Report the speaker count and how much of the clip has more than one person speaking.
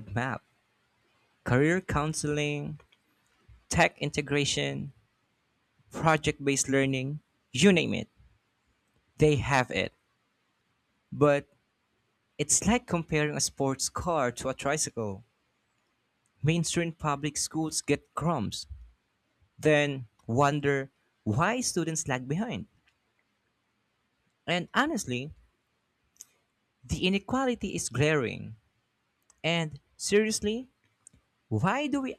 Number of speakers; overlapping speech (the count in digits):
1, no overlap